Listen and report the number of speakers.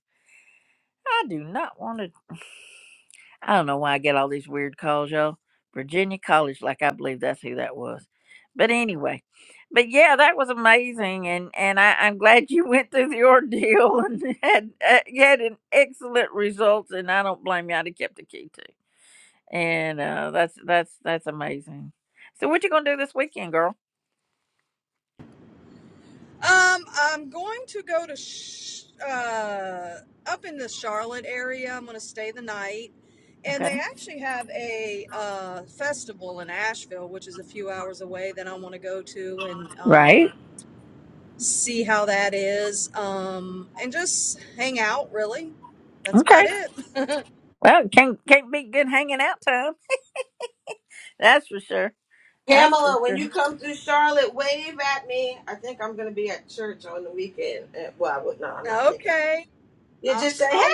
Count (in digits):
3